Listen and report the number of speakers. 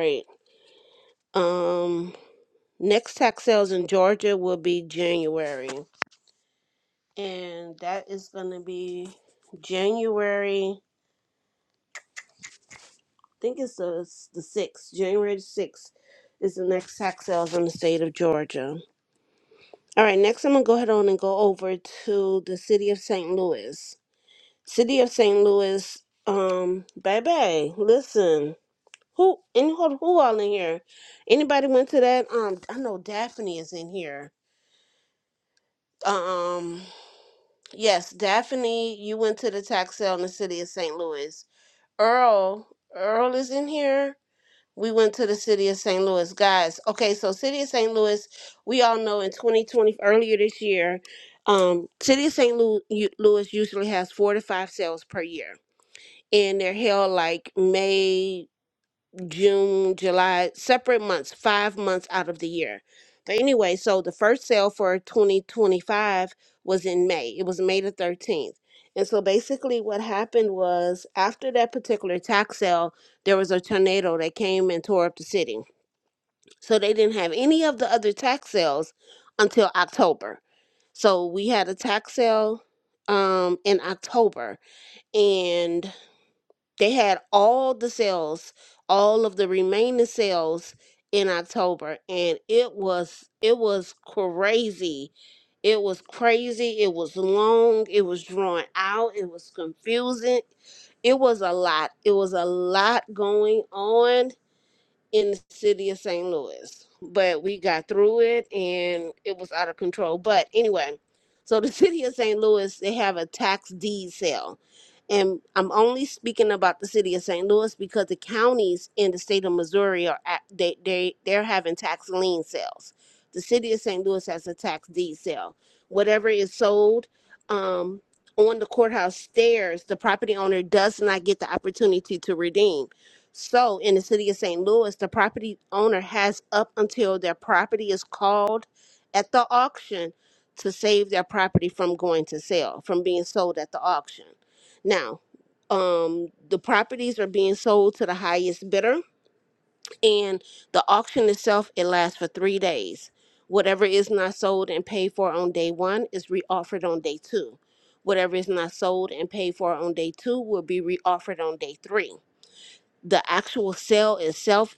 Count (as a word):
one